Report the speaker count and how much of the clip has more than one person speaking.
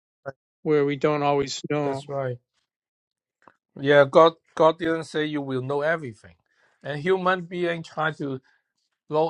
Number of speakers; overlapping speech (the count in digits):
2, about 2%